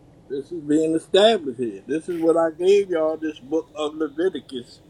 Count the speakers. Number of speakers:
1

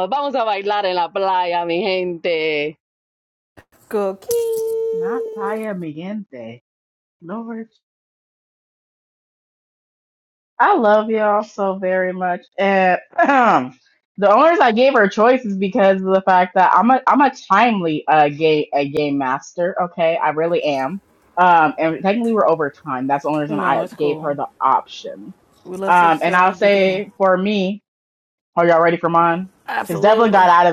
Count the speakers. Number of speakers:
3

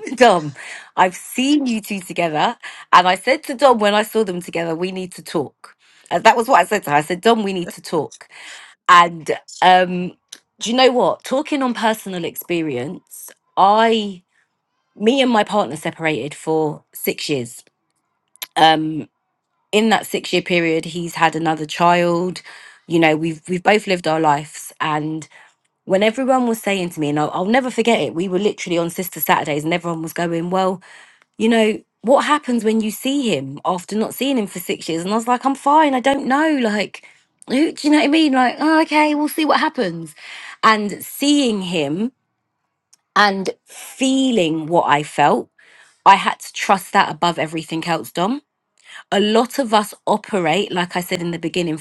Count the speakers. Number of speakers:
1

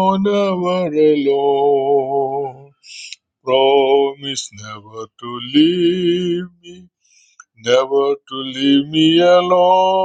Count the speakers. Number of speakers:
1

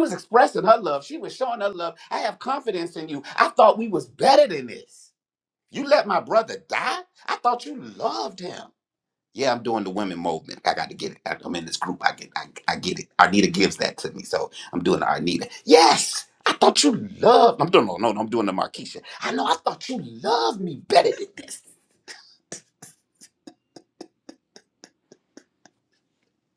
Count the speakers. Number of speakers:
1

